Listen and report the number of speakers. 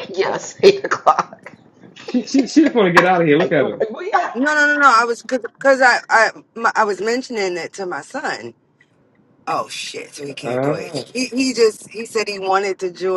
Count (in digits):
3